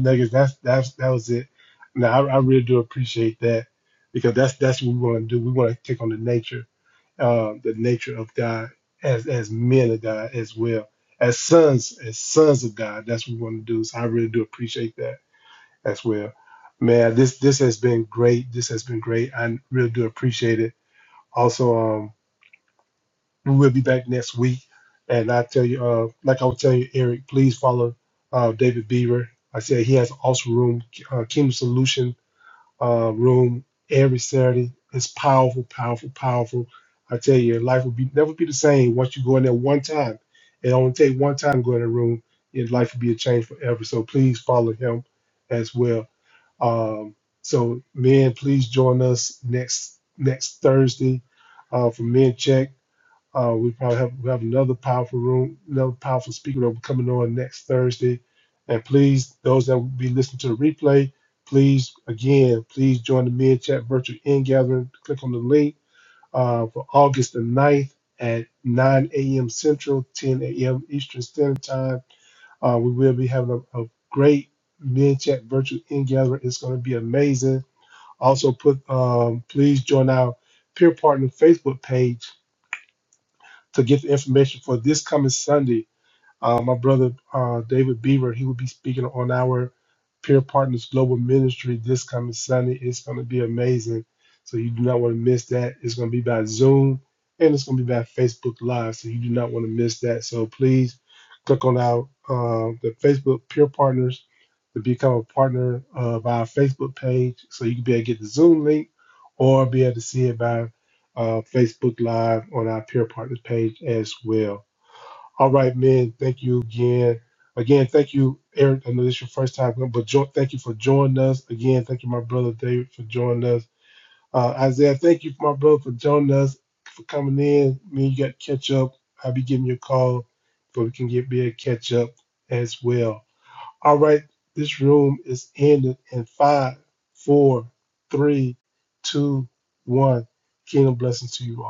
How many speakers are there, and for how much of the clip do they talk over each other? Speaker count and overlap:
one, no overlap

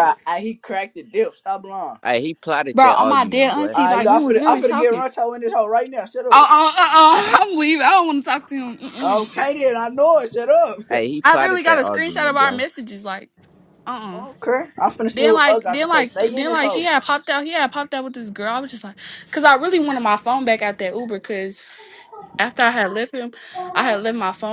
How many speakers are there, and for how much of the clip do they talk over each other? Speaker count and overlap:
three, about 24%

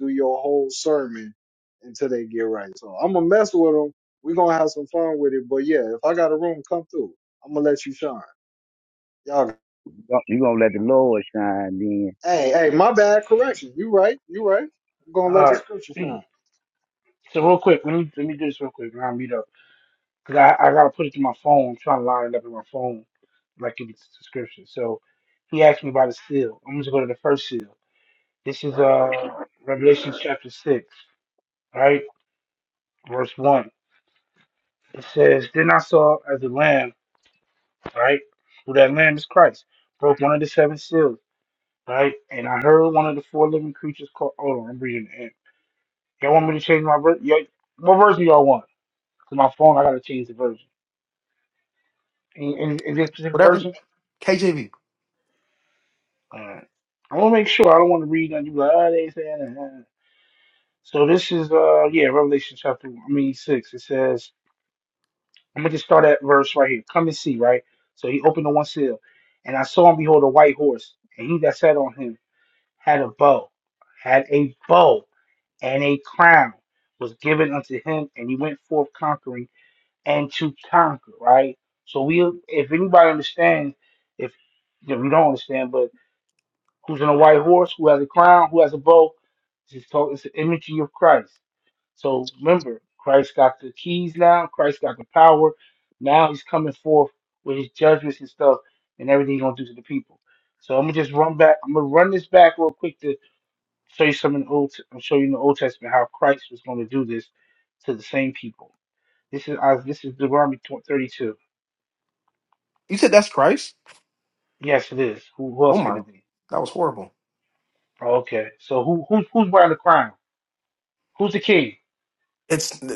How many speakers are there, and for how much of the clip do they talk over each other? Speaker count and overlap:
four, about 1%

